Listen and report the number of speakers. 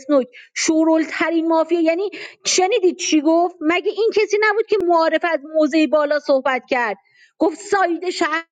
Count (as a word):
one